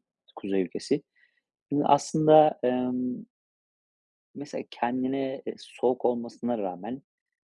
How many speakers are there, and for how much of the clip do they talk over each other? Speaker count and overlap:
1, no overlap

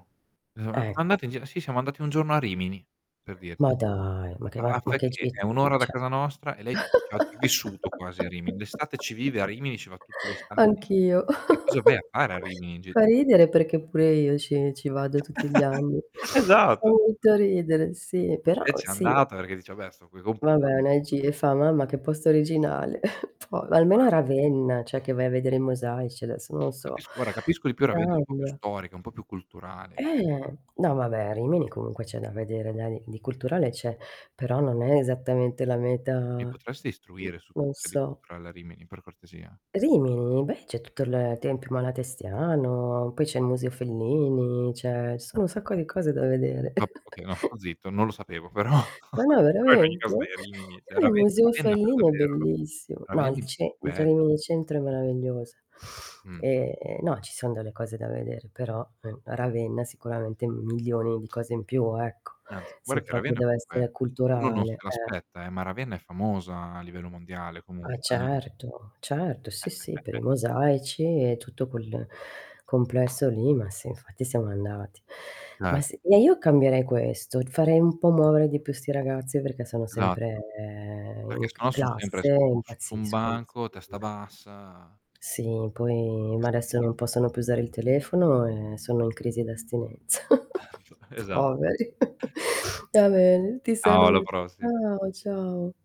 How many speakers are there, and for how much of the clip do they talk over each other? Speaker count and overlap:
2, about 13%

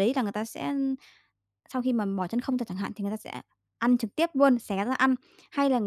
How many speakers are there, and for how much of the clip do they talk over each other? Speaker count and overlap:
1, no overlap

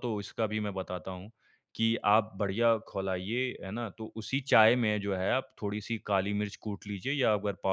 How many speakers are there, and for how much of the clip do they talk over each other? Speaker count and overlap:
1, no overlap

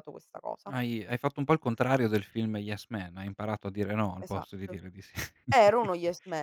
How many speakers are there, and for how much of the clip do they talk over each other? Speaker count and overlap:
2, about 9%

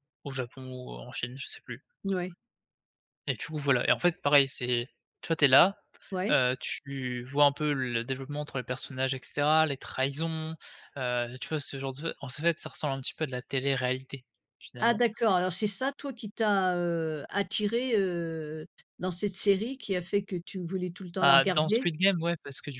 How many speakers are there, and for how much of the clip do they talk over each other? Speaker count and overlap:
2, about 4%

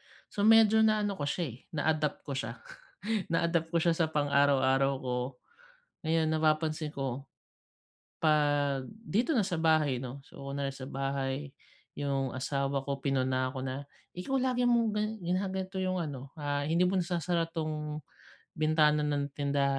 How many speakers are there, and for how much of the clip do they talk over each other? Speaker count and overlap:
1, no overlap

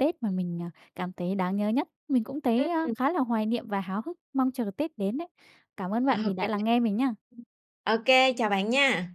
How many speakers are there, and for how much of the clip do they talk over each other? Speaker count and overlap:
2, about 5%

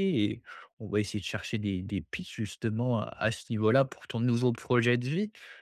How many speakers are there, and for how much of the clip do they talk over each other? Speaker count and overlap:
1, no overlap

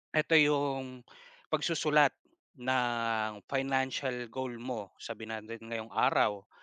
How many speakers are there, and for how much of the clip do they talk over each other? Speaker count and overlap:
1, no overlap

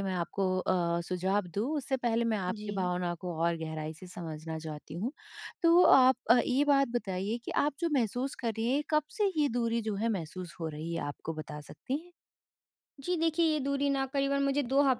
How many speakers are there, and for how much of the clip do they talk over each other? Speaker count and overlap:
2, about 3%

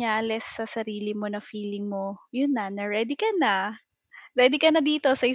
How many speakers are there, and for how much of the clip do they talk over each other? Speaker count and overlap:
1, no overlap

